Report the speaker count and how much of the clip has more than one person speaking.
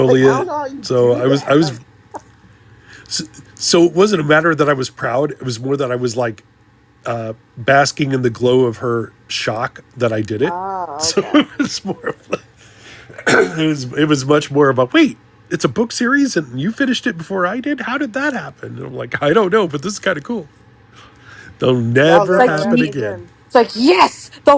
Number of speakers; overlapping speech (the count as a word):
three, about 12%